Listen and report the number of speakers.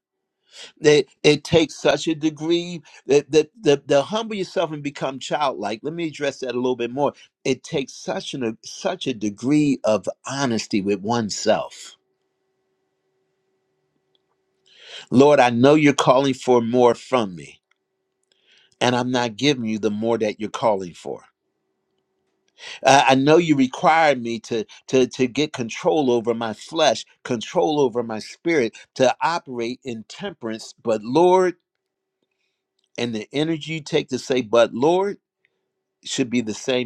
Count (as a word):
one